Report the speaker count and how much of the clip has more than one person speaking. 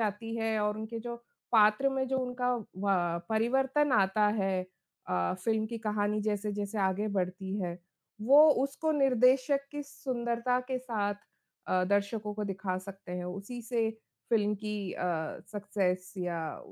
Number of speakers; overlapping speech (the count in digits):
1, no overlap